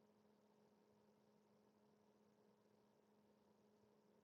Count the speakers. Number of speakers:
0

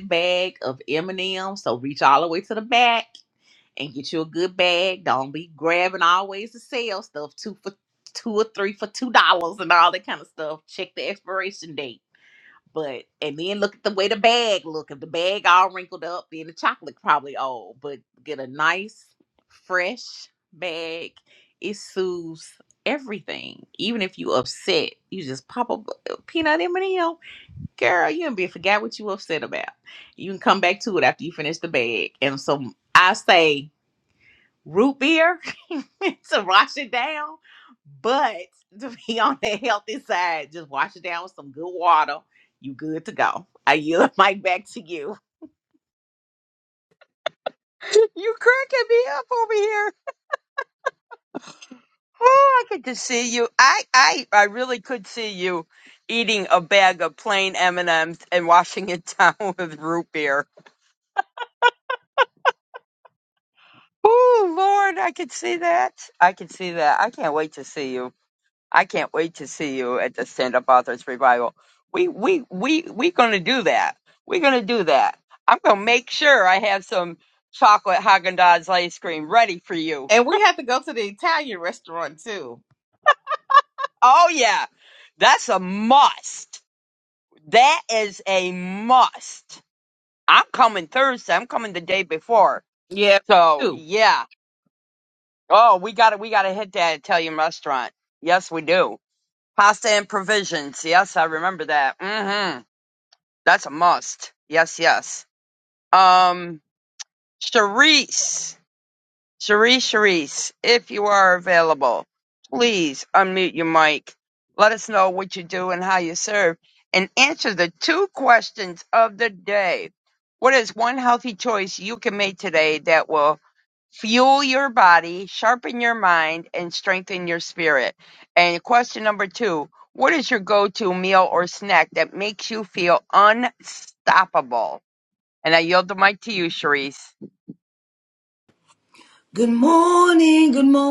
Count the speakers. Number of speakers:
3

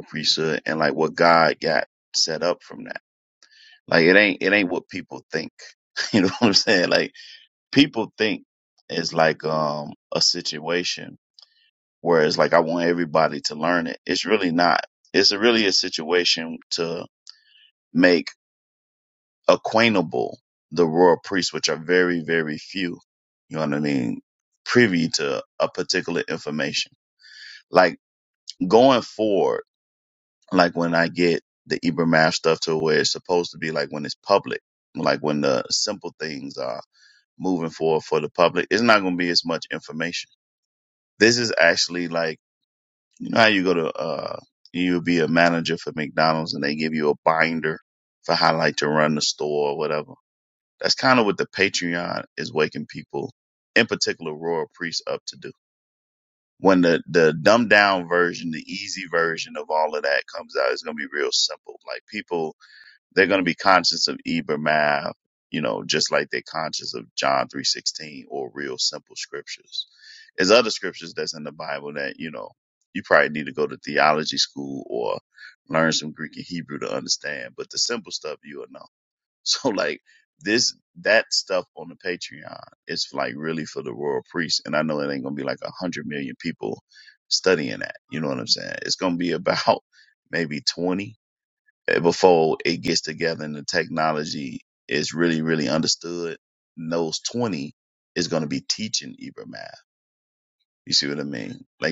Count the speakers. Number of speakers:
1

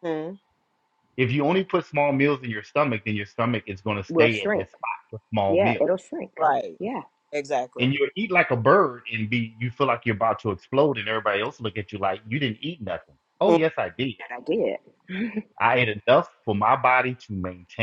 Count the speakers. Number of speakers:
3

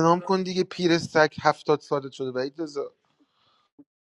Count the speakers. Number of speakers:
1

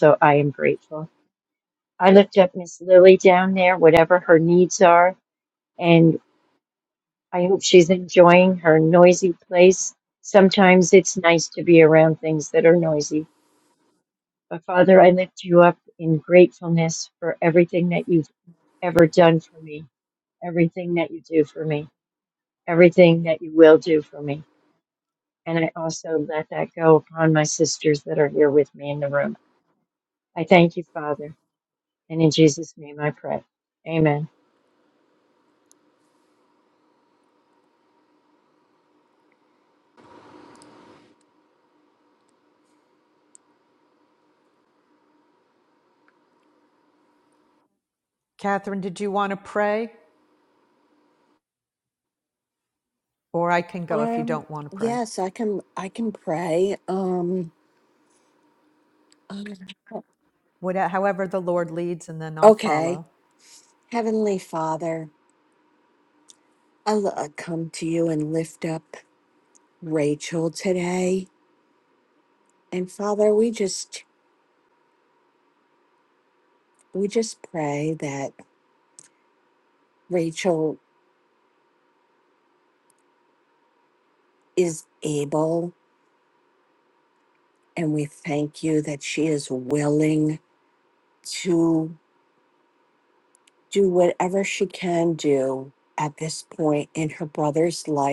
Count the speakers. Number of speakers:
3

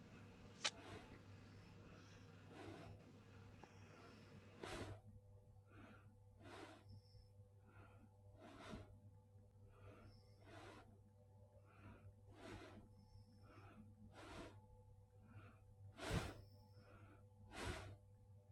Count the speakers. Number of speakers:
0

